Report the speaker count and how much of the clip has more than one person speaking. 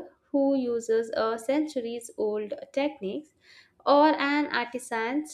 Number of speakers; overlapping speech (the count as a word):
one, no overlap